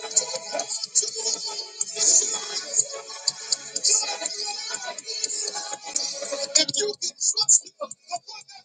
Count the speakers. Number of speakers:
0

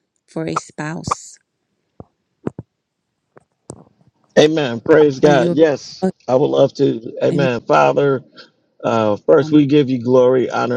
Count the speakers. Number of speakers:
2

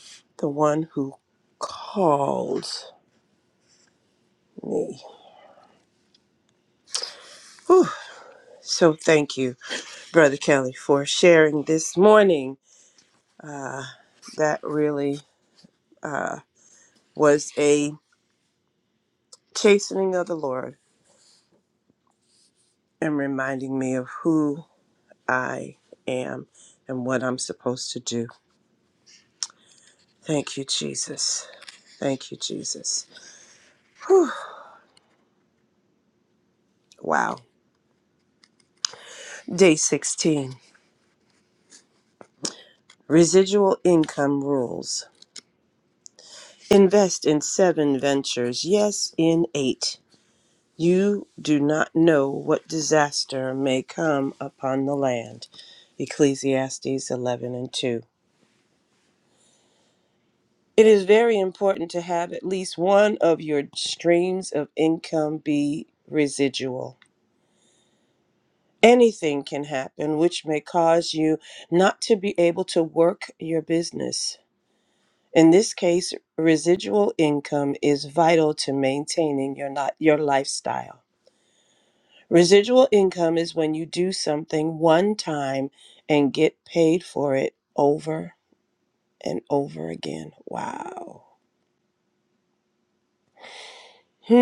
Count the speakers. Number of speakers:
1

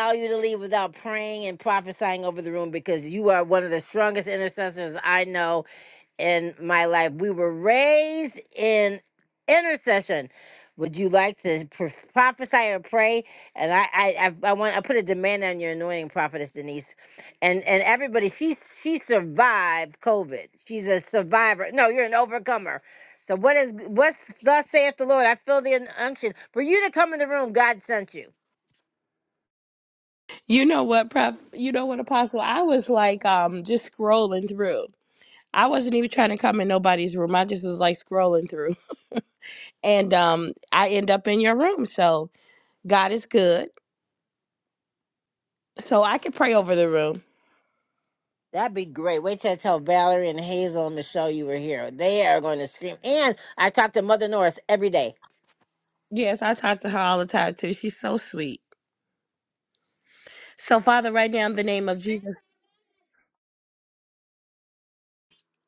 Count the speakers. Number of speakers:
2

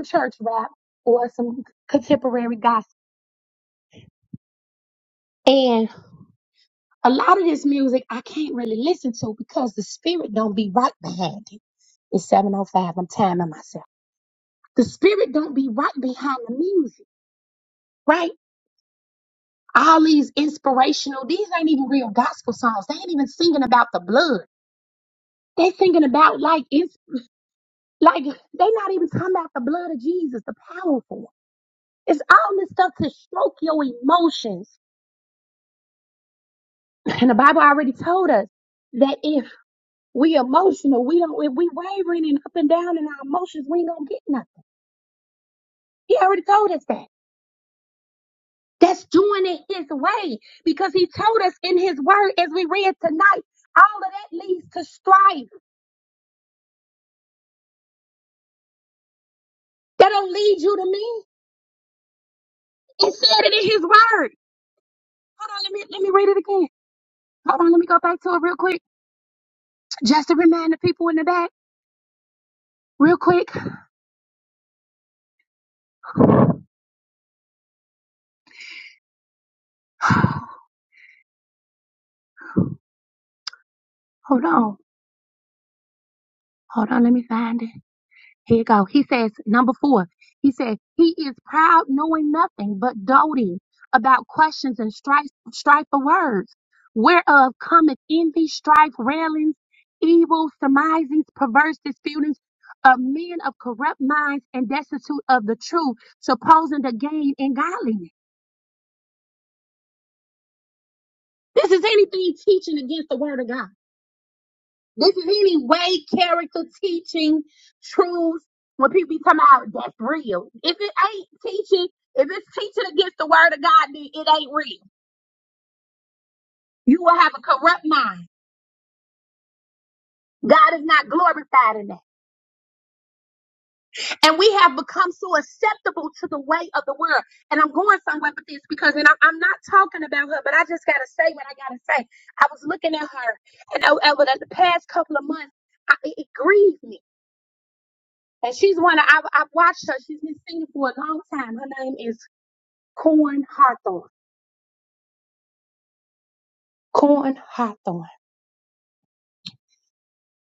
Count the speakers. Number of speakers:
1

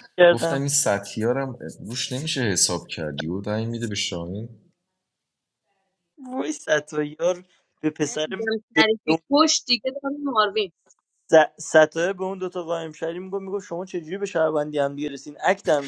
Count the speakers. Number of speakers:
3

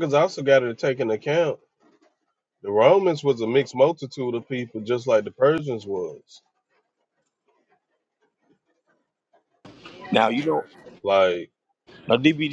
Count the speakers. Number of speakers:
2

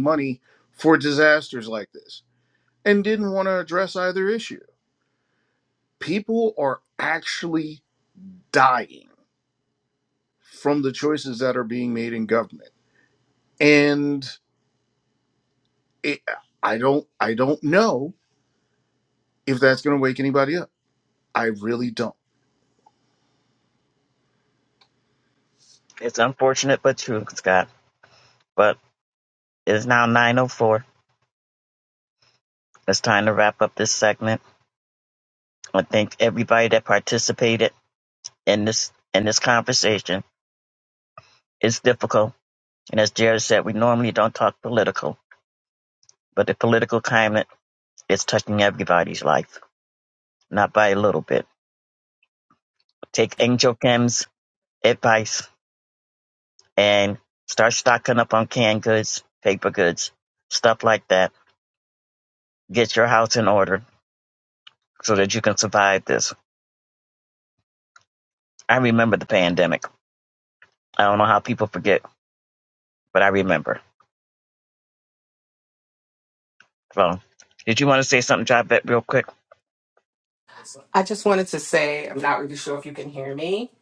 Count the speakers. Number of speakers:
3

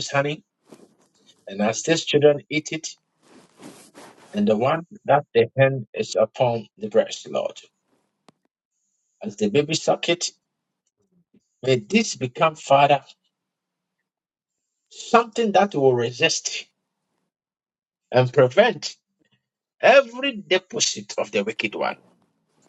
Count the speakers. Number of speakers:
1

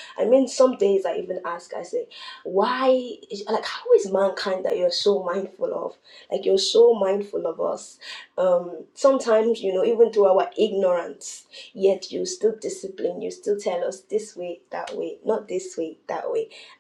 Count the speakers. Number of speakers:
1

